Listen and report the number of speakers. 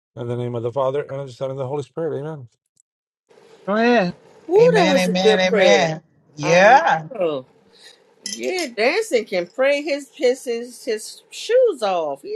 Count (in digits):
3